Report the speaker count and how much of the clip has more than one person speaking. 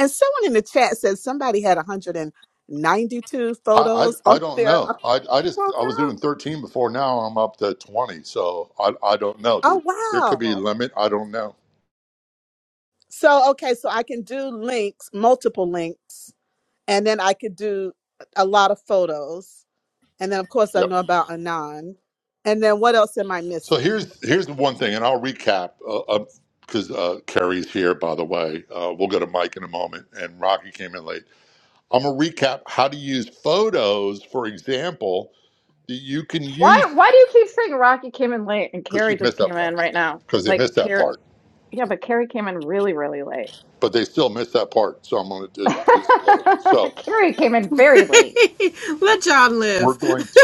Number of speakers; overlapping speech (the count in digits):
4, about 11%